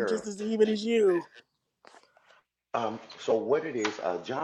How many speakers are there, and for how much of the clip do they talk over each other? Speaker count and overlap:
2, about 6%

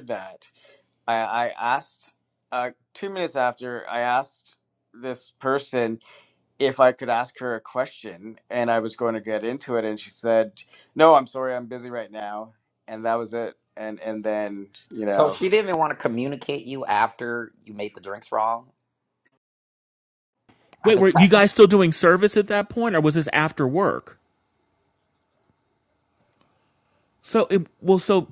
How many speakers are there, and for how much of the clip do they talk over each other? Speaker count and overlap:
3, about 3%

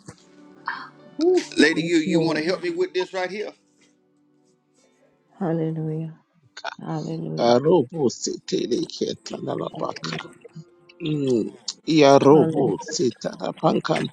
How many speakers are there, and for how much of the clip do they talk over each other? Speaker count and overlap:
3, about 15%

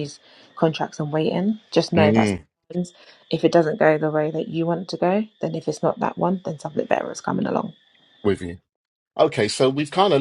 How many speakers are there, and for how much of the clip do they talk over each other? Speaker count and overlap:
2, about 4%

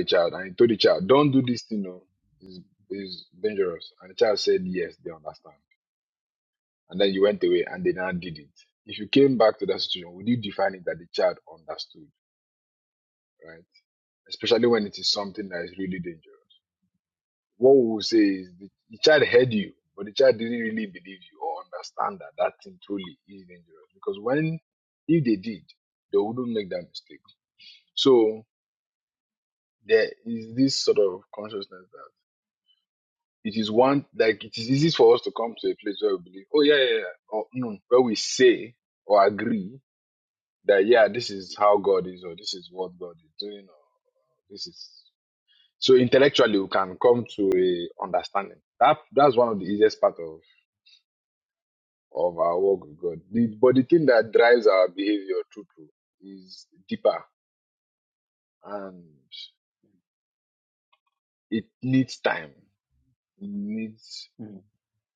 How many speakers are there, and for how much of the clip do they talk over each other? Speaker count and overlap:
1, no overlap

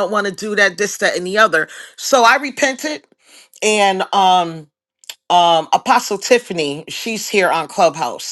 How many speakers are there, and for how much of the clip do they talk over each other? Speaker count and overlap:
1, no overlap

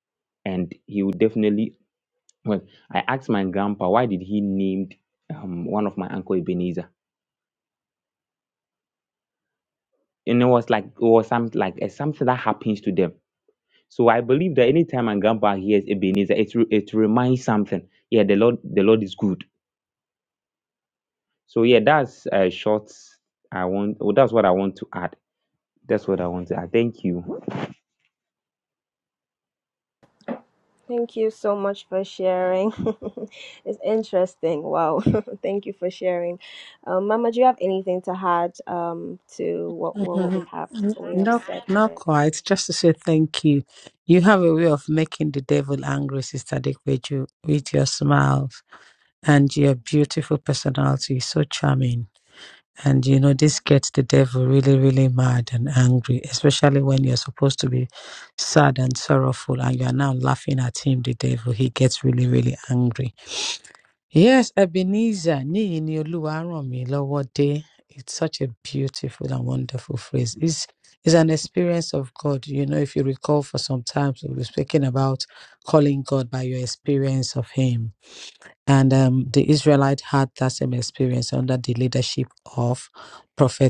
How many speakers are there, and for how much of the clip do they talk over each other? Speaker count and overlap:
3, about 2%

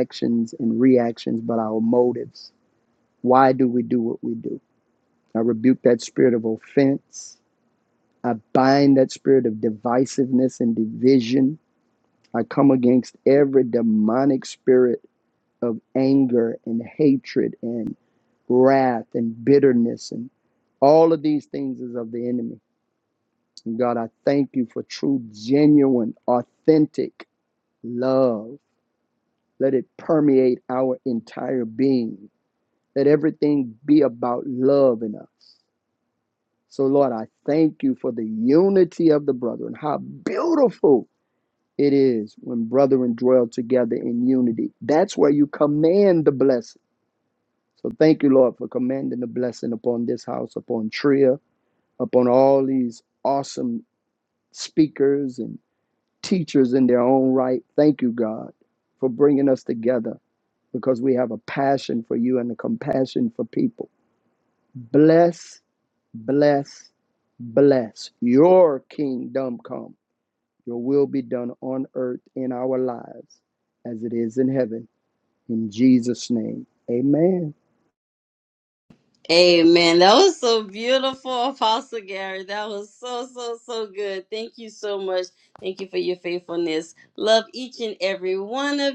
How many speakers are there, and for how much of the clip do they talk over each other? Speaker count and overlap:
2, no overlap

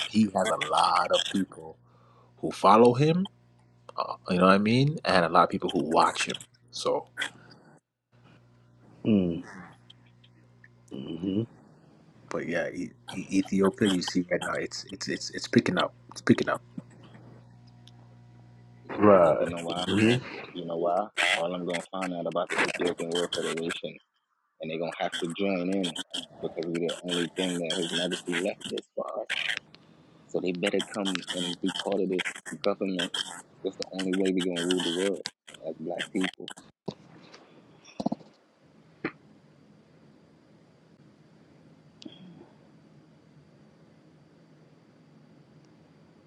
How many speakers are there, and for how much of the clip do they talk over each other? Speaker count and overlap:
3, about 2%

